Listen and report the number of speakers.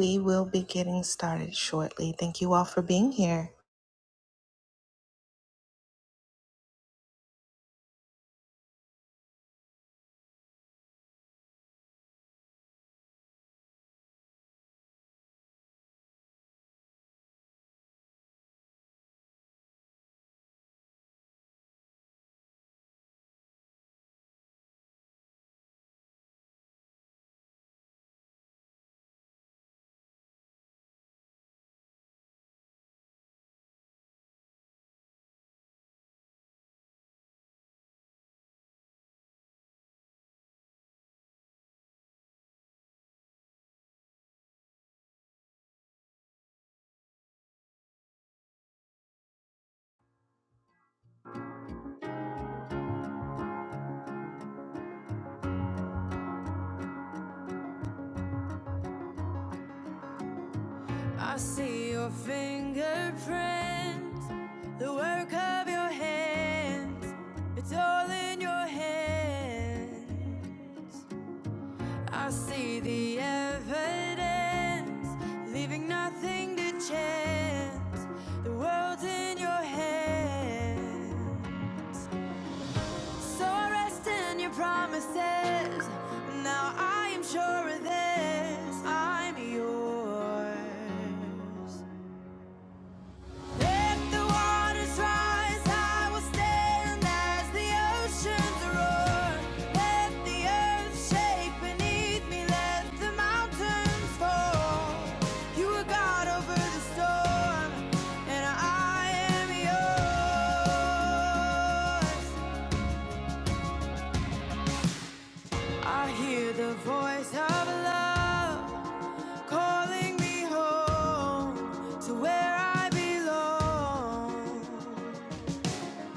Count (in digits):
2